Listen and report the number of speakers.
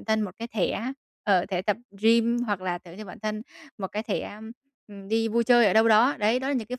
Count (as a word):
one